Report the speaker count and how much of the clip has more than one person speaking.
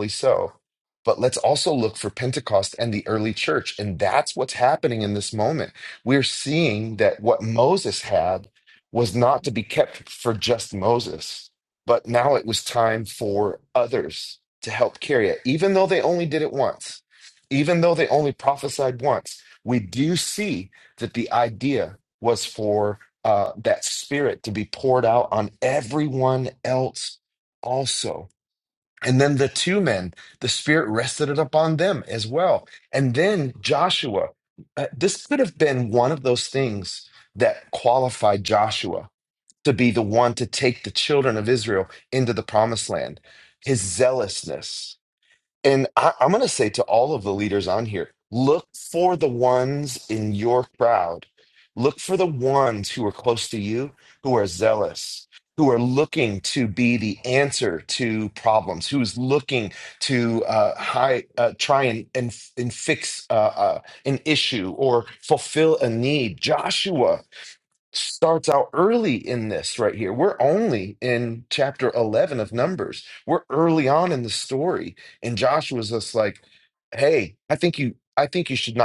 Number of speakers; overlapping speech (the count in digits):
1, no overlap